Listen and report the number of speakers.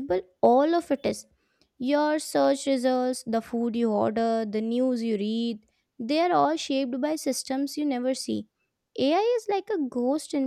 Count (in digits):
1